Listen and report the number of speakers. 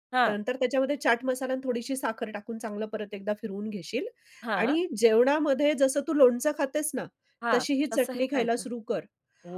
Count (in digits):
2